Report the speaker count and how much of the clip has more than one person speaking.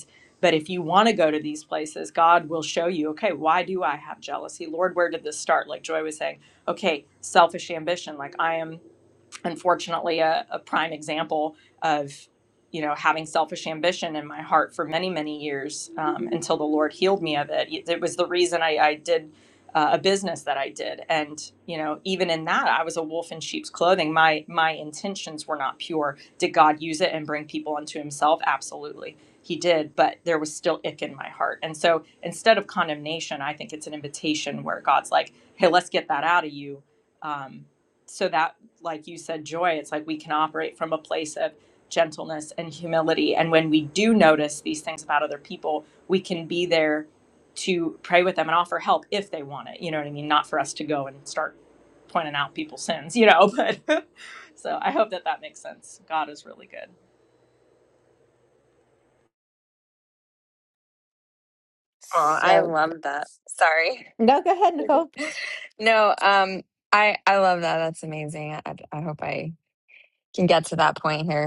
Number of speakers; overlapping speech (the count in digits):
3, under 1%